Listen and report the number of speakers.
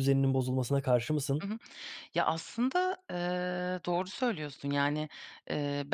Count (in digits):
2